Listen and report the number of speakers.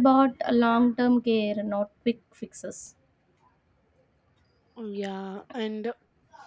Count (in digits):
2